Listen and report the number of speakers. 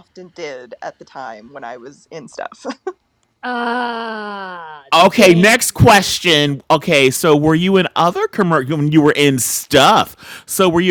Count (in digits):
3